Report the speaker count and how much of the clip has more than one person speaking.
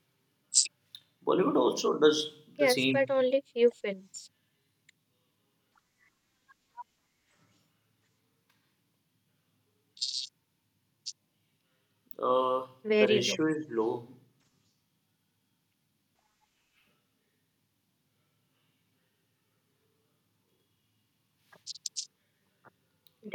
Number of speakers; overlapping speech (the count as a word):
two, about 3%